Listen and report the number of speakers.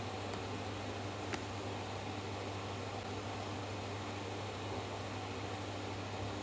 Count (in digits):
0